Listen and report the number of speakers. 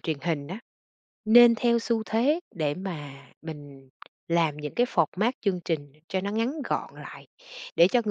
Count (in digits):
1